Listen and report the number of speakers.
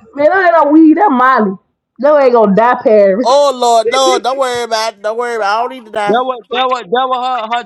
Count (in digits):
3